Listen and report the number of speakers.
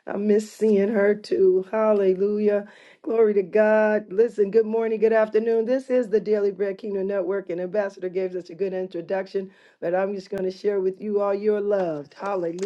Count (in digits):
1